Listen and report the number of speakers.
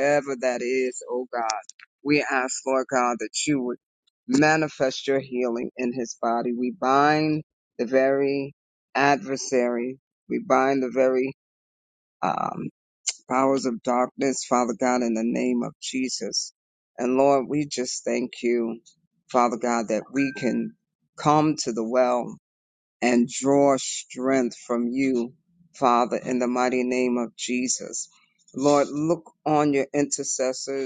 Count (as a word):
one